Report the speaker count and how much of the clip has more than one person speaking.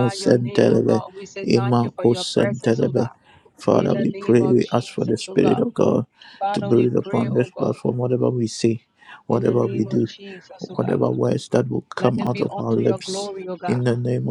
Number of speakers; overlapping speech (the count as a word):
two, about 53%